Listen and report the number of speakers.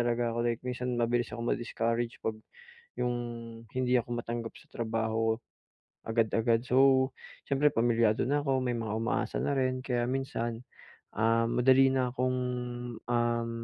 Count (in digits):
1